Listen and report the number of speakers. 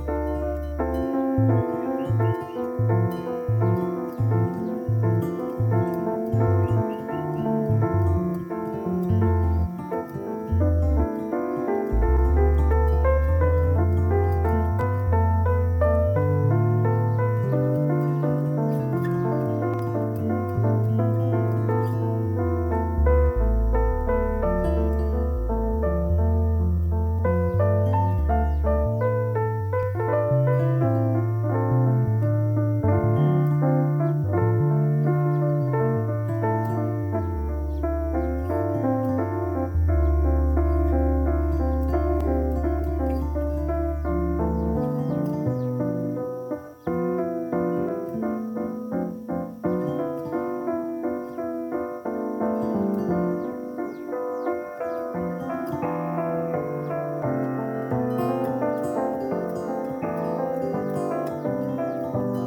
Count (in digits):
0